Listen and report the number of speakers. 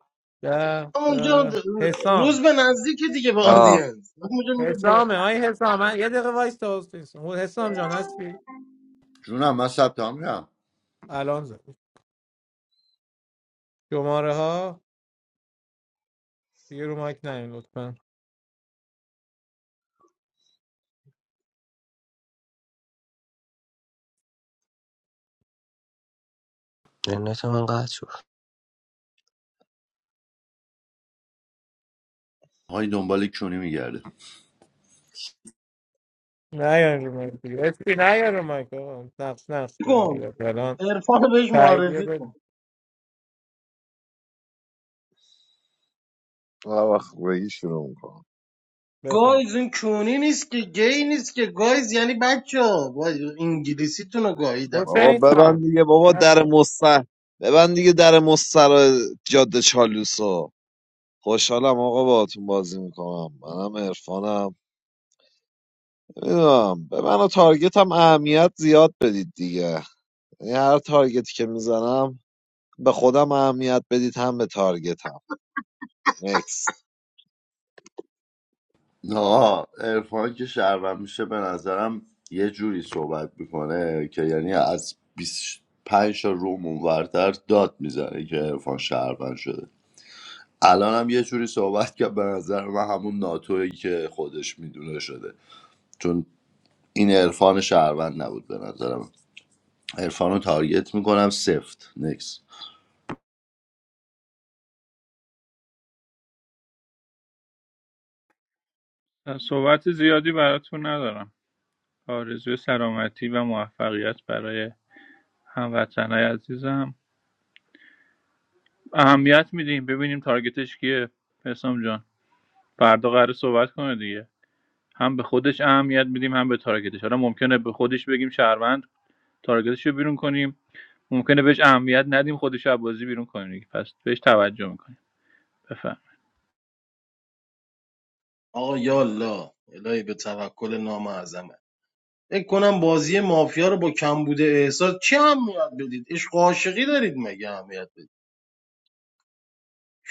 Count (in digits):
6